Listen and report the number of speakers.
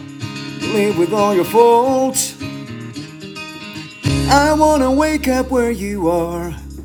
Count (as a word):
one